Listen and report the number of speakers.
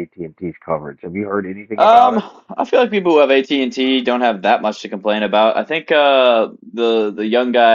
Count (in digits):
2